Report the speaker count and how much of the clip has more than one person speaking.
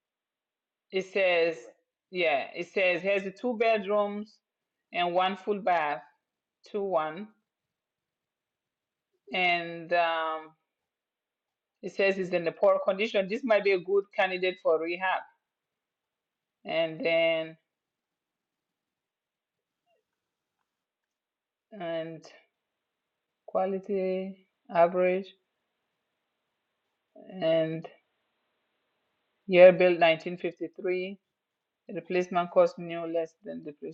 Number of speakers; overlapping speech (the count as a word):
one, no overlap